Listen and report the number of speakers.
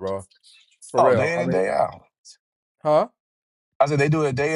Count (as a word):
two